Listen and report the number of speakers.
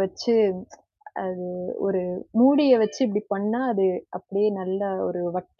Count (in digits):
1